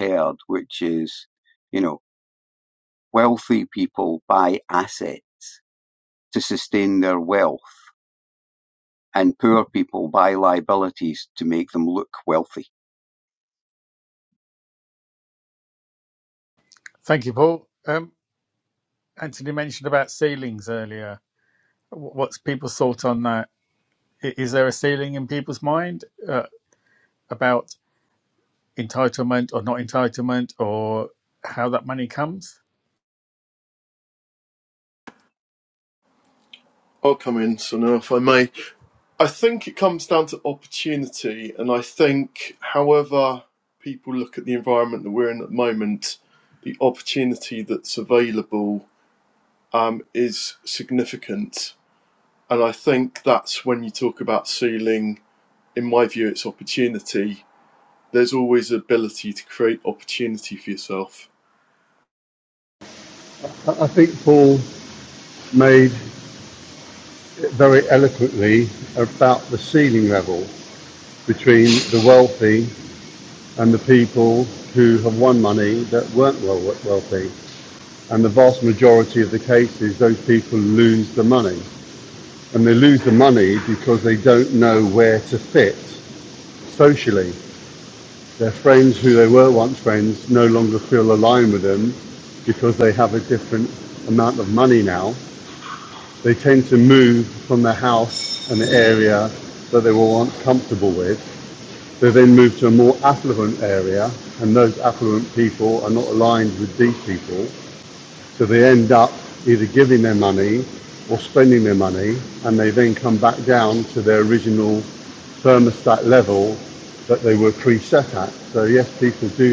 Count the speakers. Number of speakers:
4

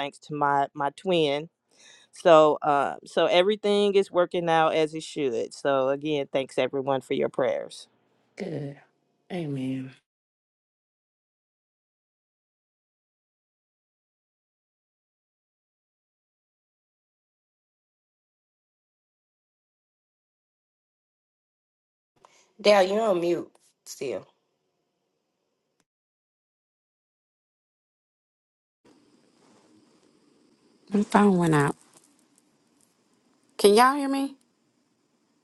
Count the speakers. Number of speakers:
3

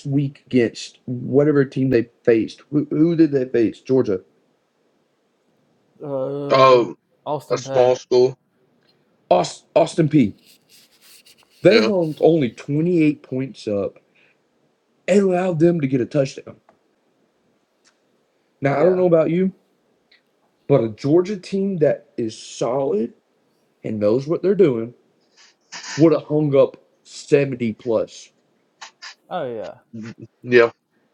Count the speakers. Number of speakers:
3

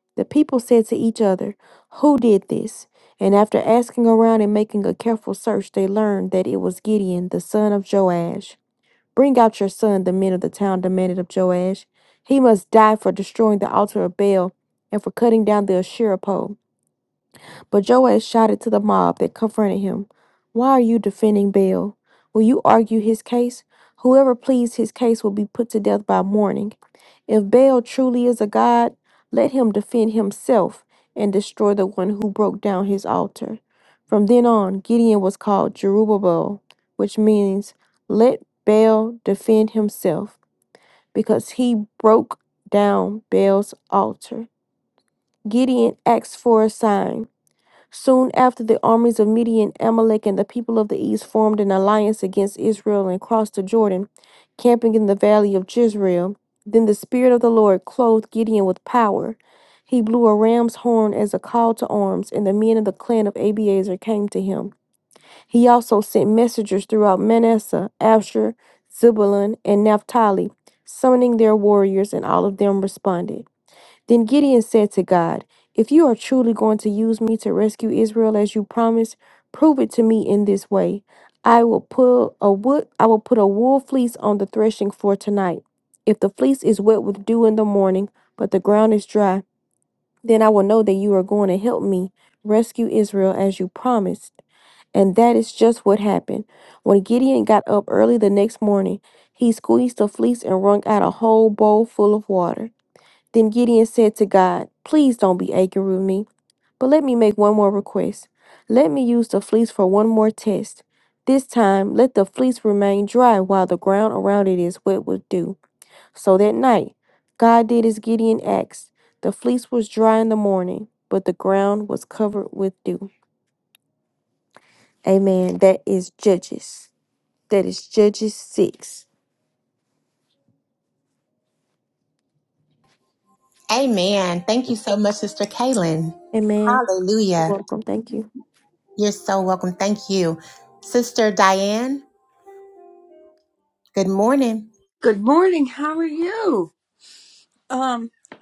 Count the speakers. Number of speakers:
3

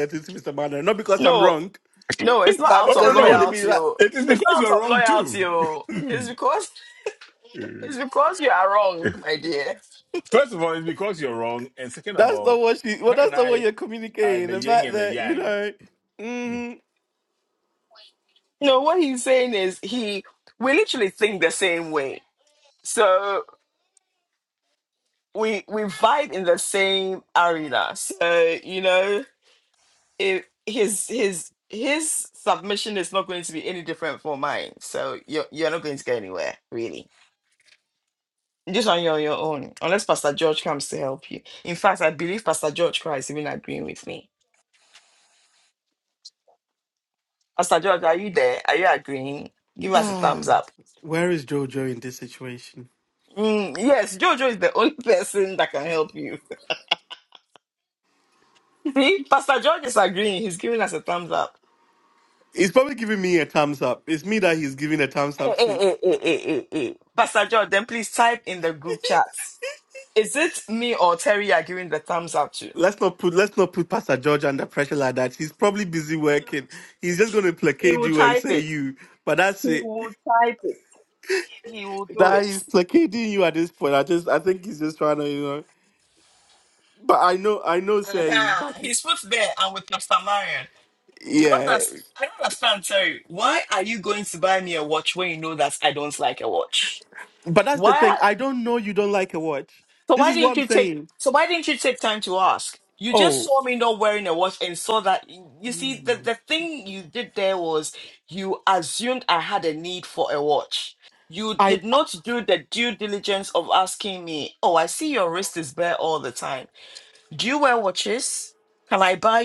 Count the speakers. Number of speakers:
3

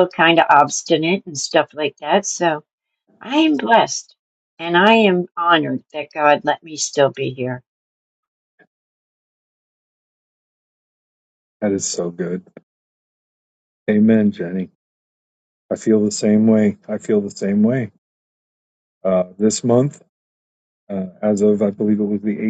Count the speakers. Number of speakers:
2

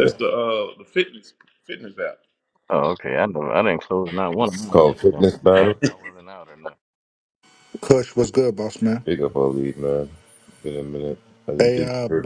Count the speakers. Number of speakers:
4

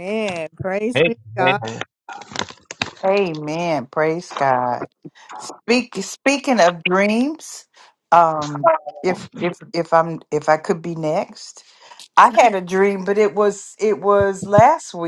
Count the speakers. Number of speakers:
2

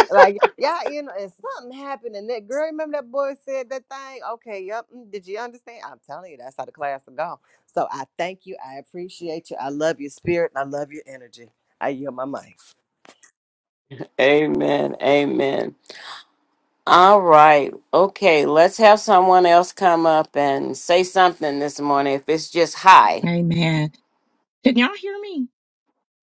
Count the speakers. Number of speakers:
3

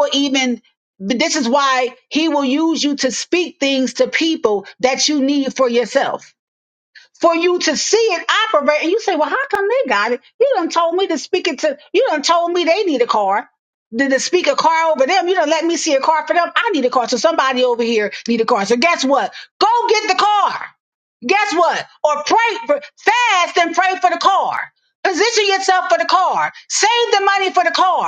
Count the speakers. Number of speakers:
1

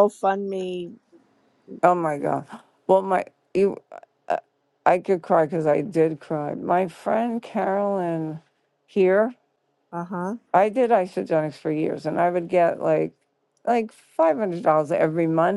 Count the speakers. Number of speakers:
2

